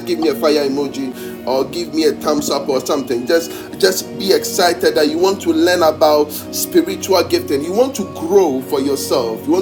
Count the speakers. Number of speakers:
one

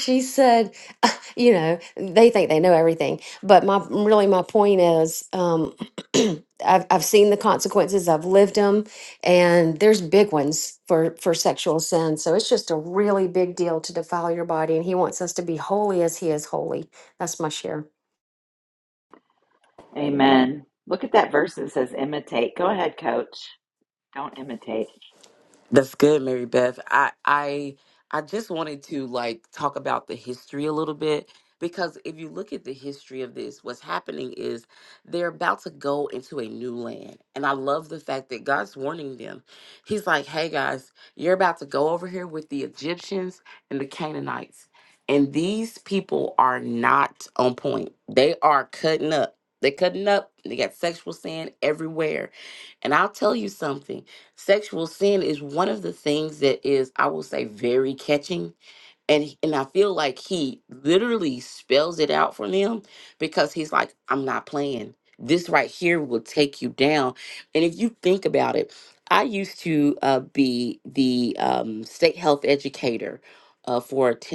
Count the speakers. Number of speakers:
three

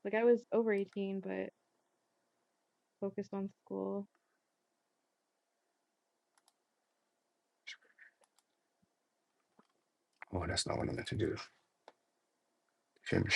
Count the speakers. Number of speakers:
two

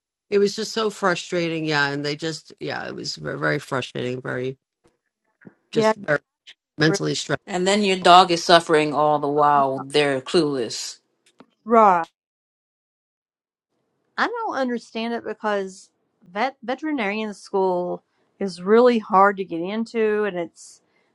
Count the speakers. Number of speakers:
three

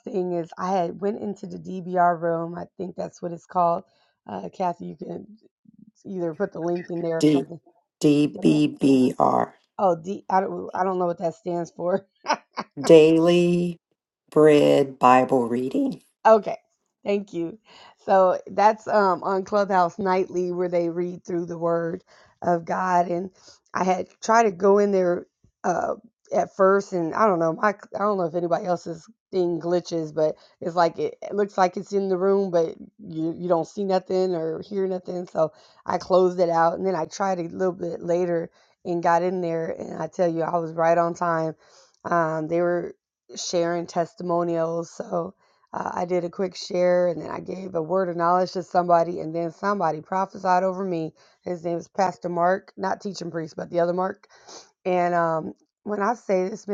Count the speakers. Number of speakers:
two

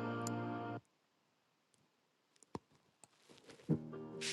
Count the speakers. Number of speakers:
zero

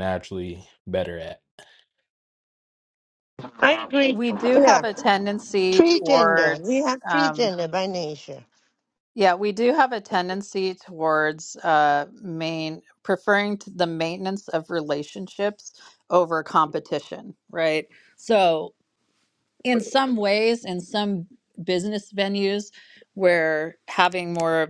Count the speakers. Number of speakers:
three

